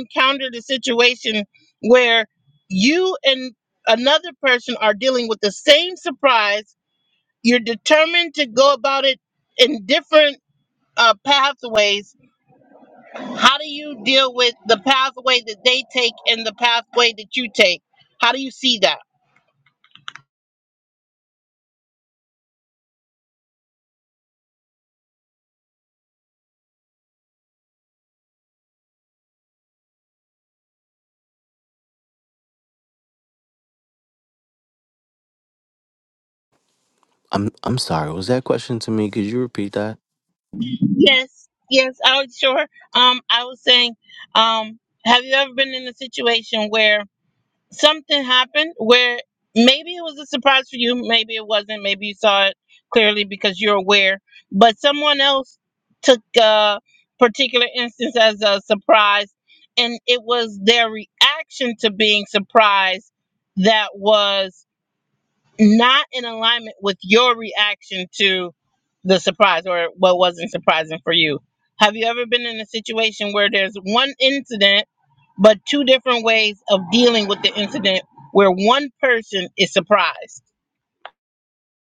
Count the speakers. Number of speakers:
2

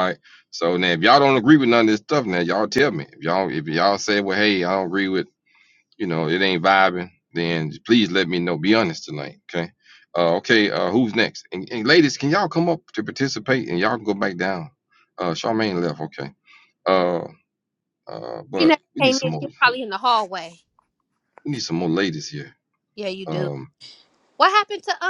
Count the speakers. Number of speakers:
2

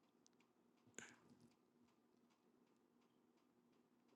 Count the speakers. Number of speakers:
0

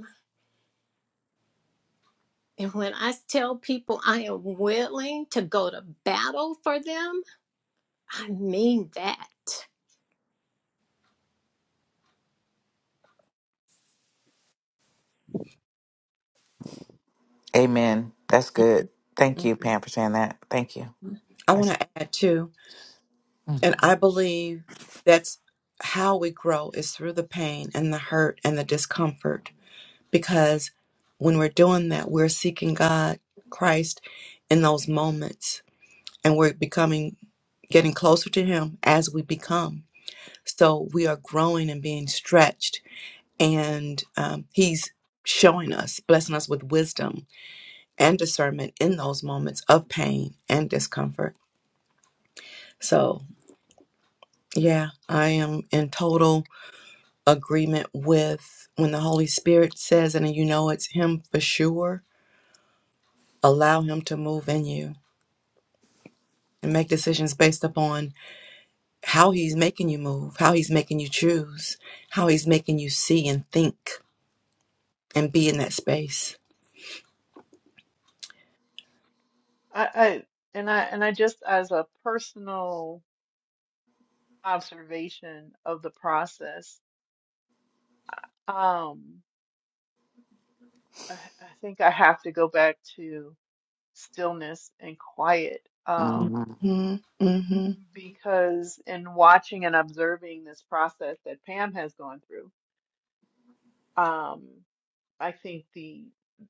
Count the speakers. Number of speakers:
4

